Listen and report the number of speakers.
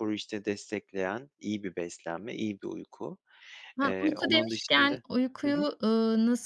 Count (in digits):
2